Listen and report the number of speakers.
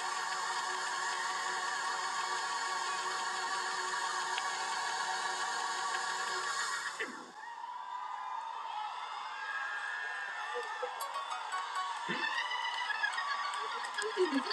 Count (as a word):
zero